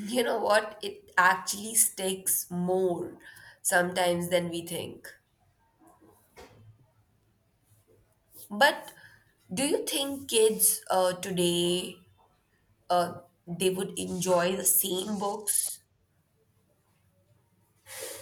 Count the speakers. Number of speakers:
1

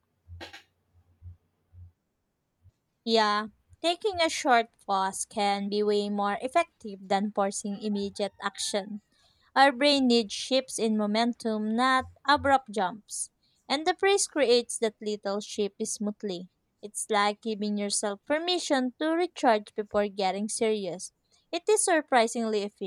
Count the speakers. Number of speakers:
1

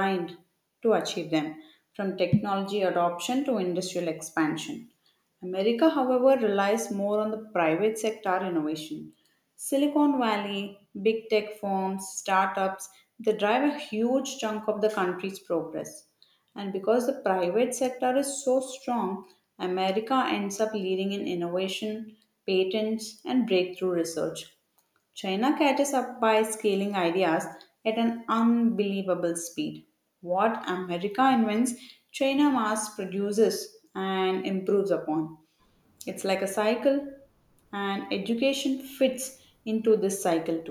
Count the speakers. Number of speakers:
1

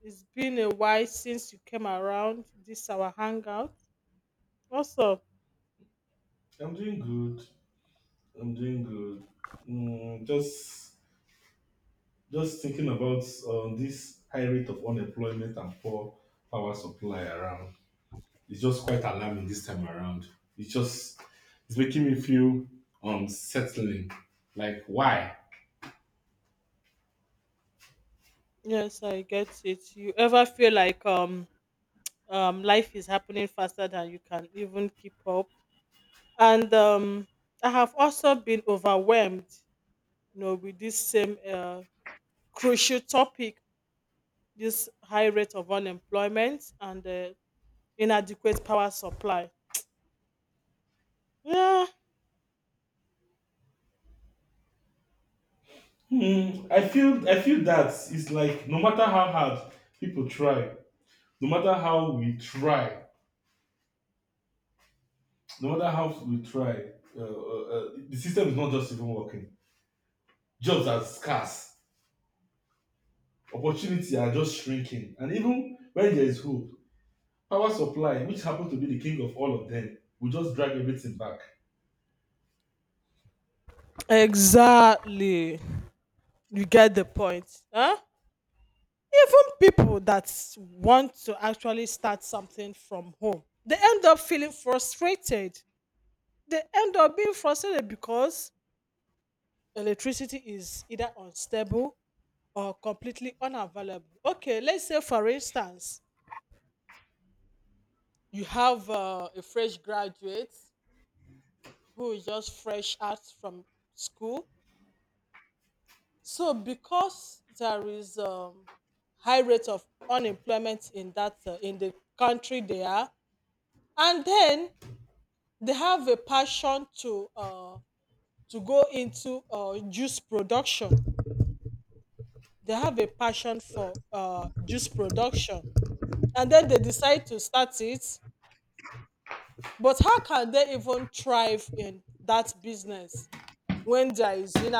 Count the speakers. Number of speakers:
2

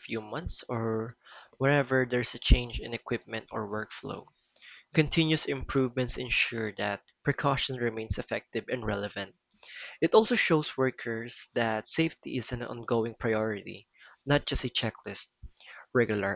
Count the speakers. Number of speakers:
1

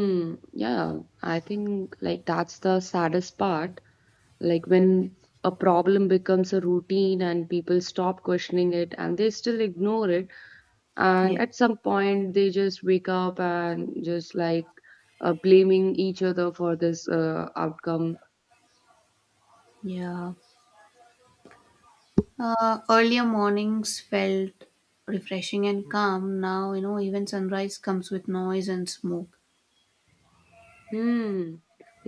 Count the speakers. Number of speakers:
2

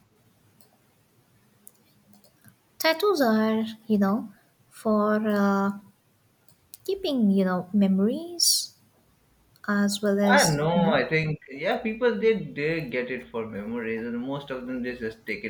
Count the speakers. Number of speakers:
2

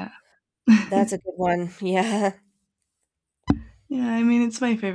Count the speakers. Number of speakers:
2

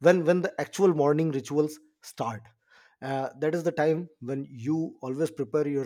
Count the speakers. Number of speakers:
1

